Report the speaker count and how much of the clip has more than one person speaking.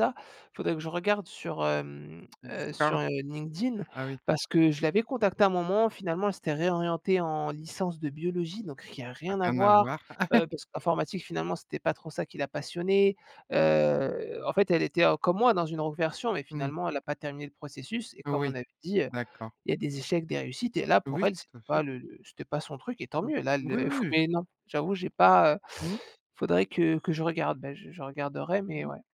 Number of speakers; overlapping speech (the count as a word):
two, about 10%